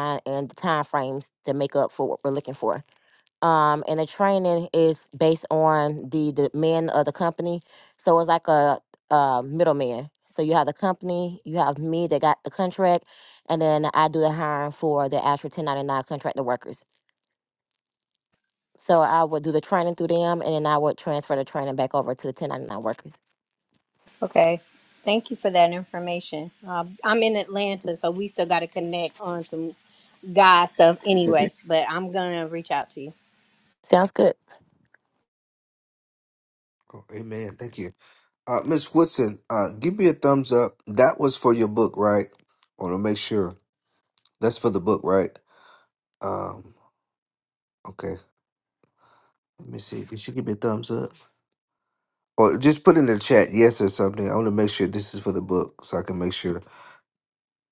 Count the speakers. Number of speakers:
three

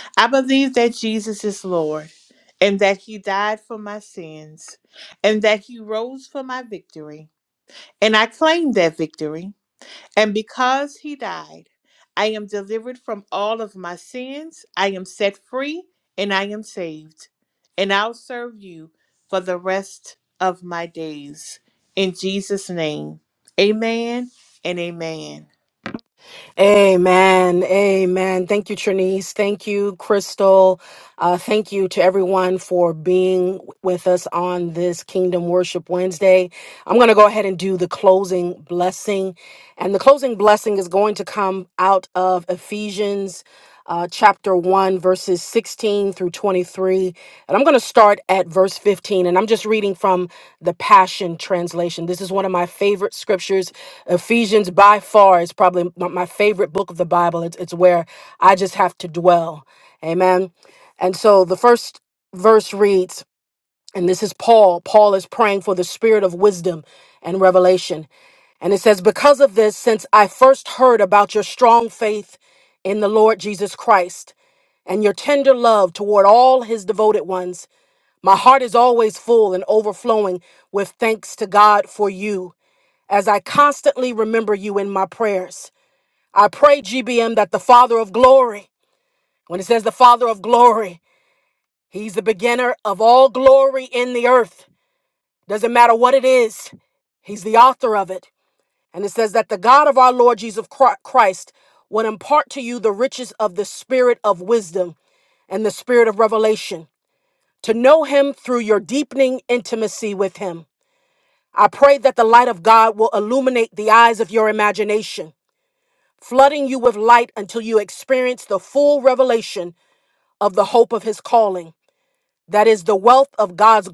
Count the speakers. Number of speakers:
two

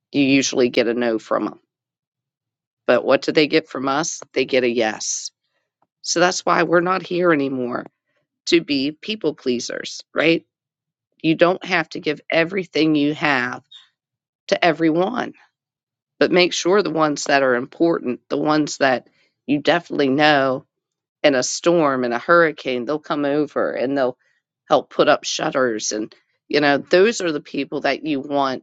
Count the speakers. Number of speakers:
one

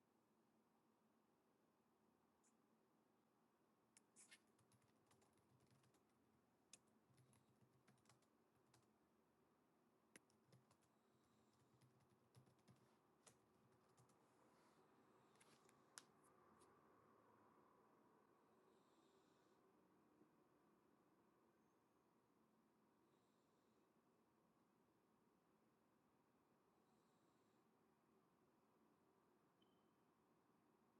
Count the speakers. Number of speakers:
zero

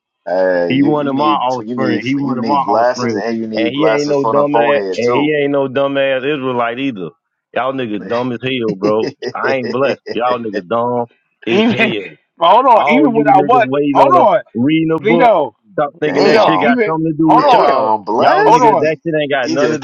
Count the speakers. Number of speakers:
three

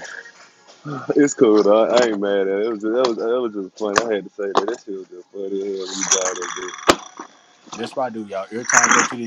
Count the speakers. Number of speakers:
two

